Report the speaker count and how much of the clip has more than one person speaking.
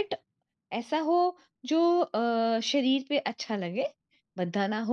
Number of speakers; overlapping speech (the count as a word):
one, no overlap